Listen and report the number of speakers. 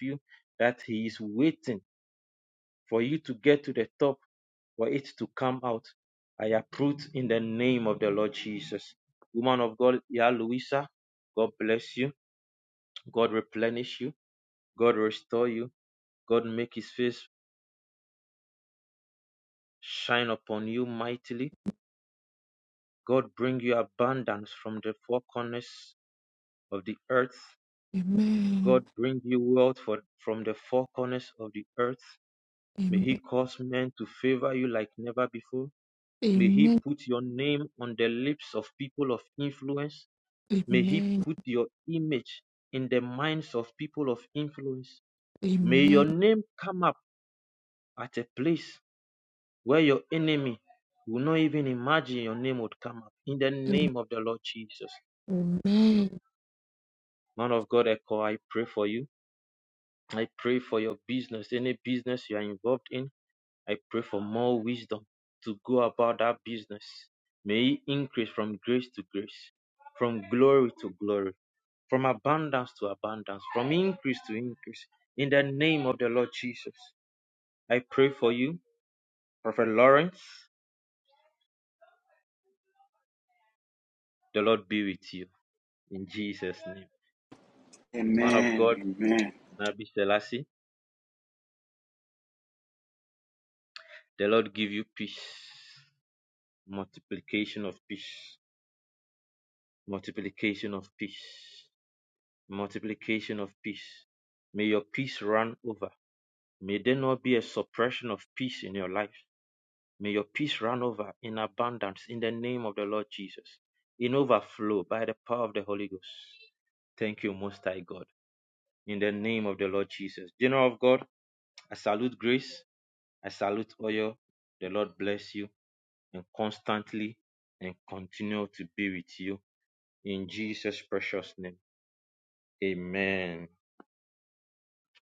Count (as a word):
three